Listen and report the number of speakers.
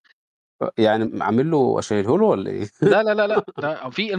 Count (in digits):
2